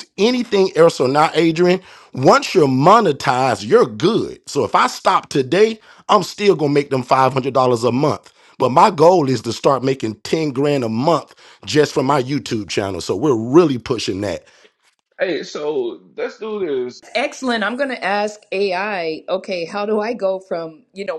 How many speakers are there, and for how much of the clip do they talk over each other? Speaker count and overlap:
three, no overlap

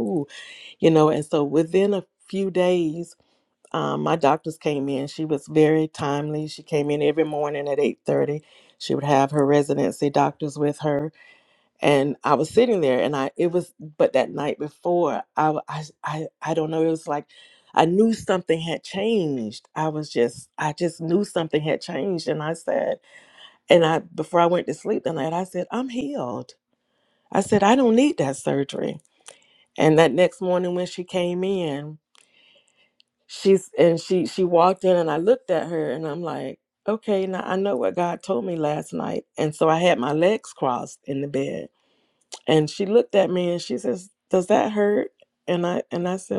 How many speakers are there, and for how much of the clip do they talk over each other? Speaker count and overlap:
one, no overlap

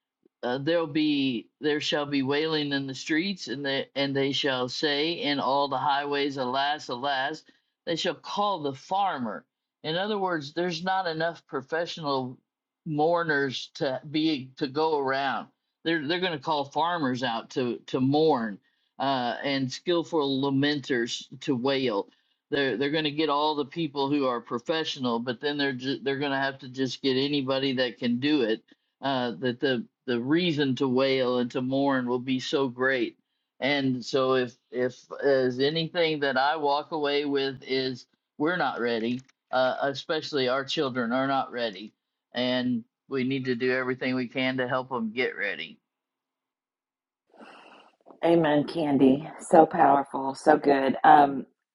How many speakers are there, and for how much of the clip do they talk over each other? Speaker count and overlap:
two, no overlap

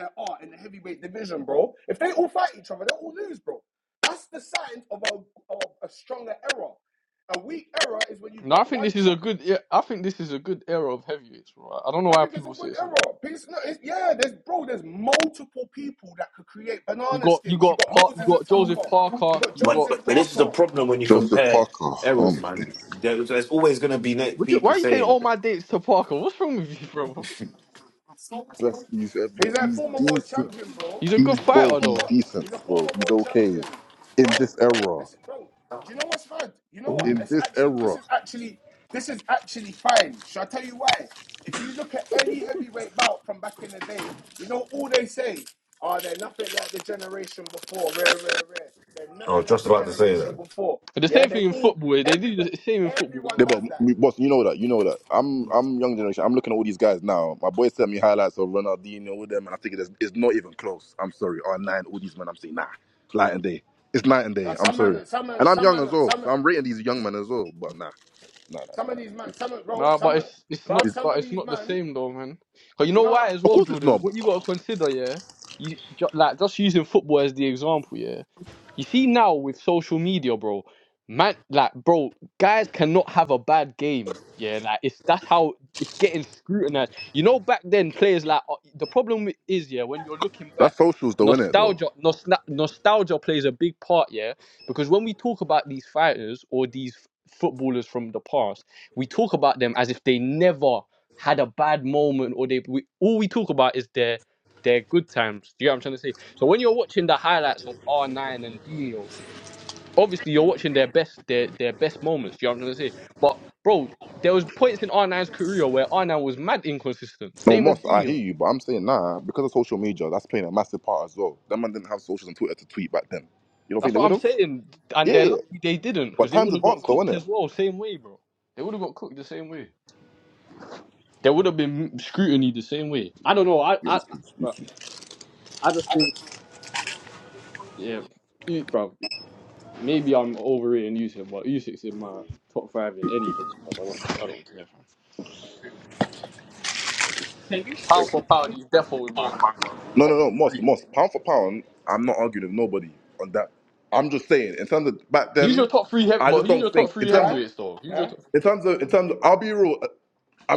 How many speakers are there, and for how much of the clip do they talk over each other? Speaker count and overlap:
four, about 17%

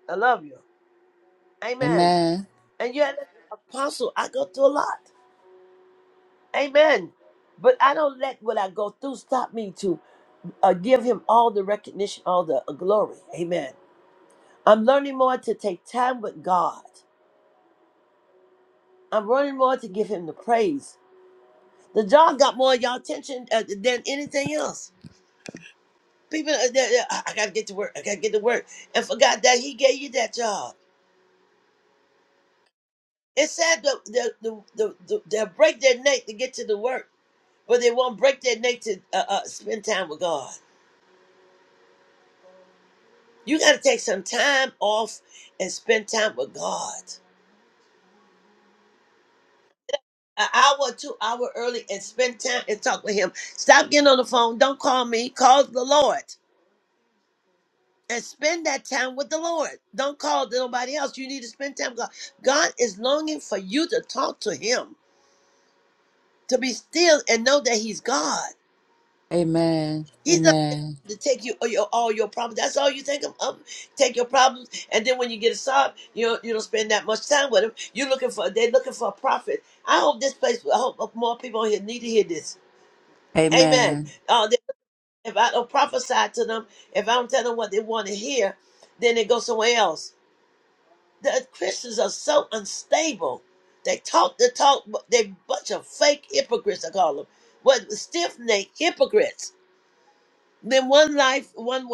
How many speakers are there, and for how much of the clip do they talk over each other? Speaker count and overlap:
two, about 1%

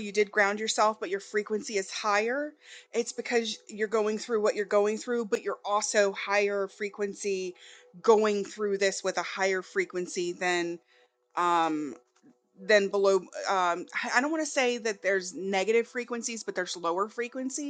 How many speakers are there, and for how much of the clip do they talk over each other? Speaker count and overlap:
one, no overlap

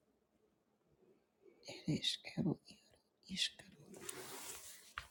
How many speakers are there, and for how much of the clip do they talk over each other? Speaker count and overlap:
one, no overlap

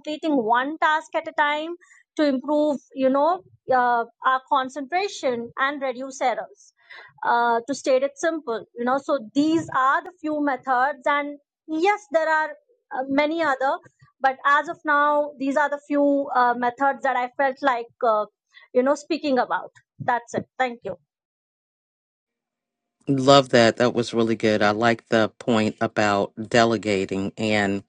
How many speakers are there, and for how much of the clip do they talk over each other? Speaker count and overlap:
two, no overlap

